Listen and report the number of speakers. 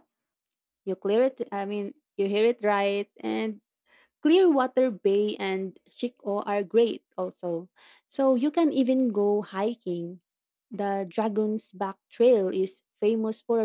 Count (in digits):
1